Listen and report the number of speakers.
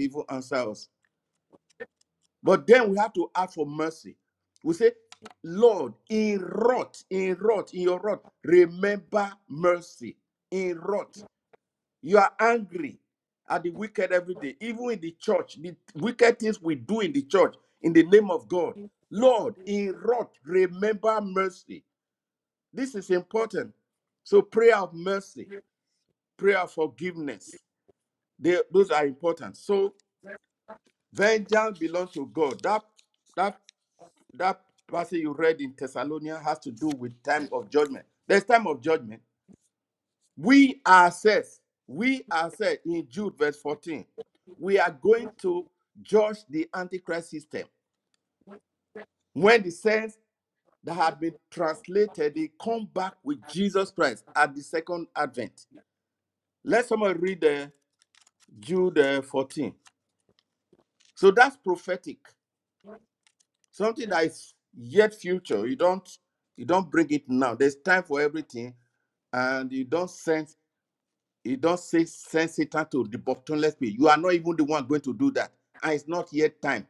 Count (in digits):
1